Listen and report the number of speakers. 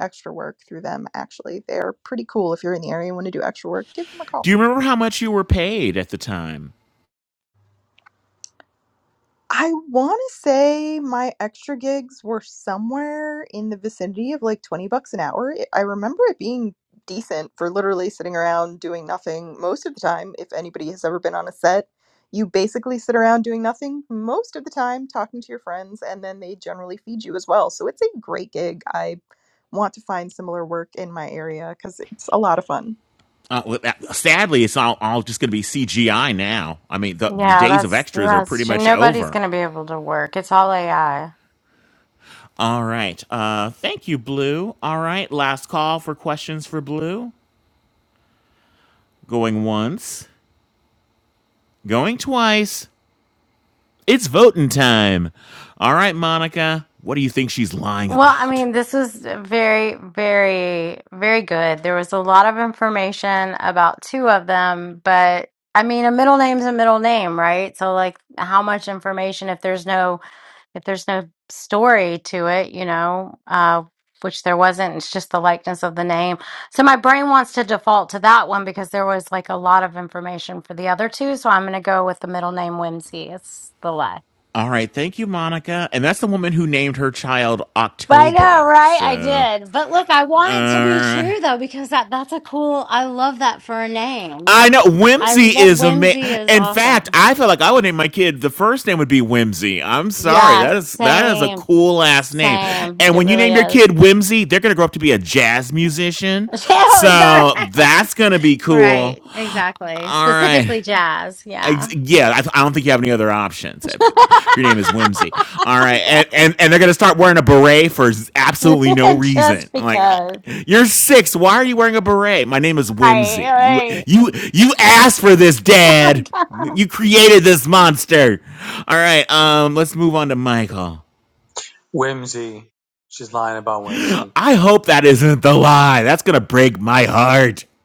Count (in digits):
4